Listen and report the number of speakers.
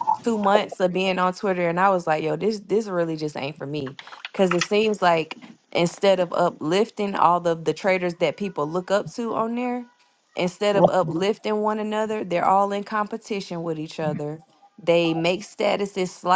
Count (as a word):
one